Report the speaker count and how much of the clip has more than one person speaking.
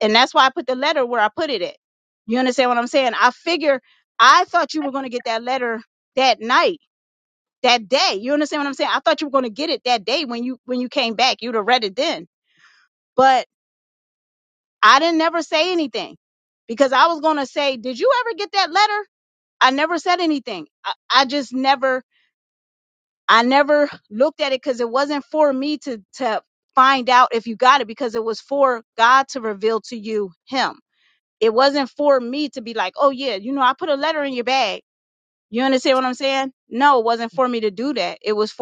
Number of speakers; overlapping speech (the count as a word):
one, no overlap